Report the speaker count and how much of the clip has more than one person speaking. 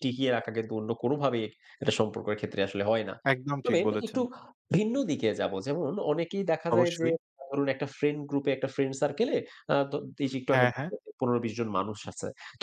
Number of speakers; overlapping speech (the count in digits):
2, about 9%